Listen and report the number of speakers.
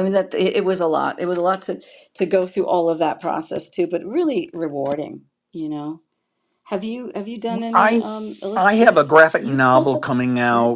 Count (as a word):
two